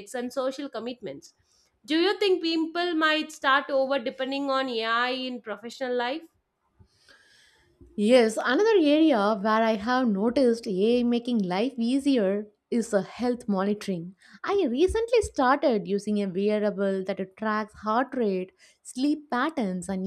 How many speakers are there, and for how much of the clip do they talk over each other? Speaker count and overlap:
2, no overlap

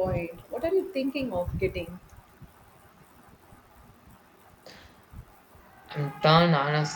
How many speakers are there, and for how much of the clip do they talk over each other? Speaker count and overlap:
2, no overlap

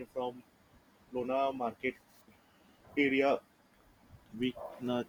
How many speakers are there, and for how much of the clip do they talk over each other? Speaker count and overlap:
1, no overlap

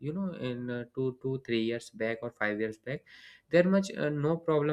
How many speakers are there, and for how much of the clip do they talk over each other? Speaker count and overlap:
1, no overlap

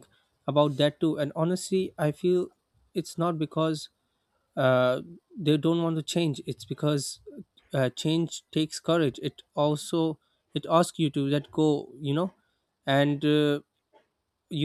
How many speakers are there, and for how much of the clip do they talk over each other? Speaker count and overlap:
1, no overlap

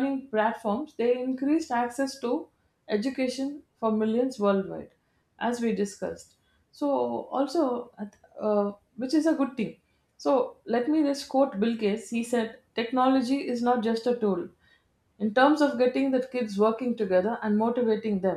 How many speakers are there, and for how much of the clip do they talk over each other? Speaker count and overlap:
1, no overlap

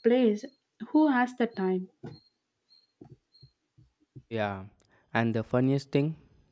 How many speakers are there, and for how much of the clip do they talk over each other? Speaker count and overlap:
2, no overlap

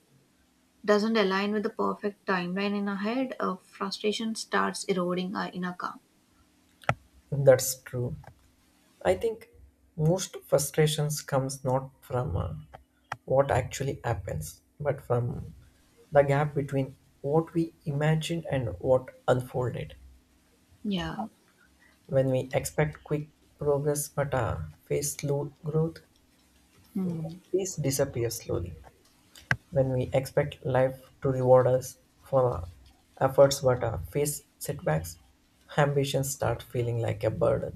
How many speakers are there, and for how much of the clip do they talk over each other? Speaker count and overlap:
2, no overlap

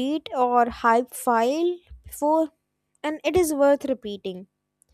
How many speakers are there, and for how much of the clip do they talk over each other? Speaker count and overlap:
1, no overlap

